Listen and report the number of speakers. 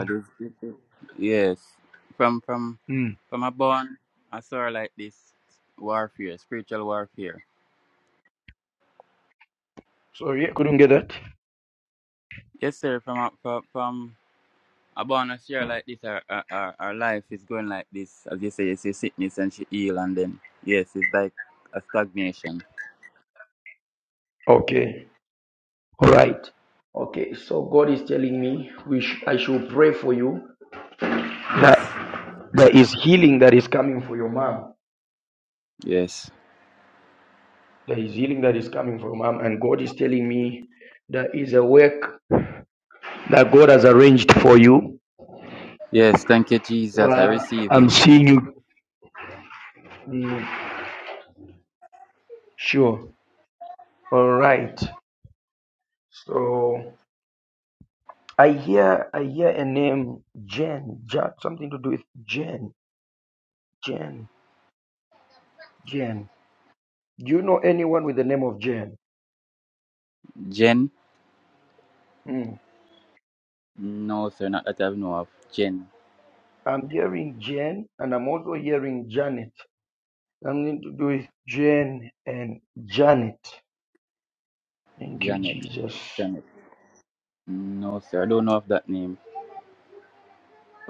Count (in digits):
2